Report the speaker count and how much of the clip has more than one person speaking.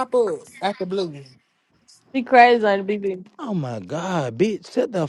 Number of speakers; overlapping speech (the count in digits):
3, no overlap